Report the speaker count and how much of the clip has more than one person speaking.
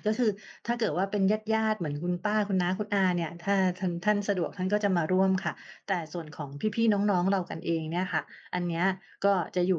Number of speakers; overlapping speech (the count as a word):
one, no overlap